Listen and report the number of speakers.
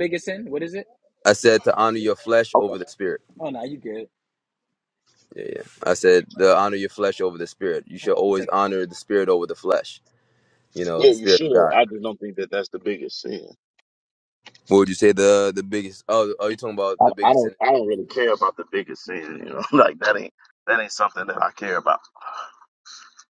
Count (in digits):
3